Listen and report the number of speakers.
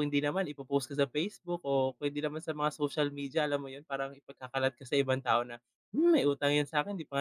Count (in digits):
1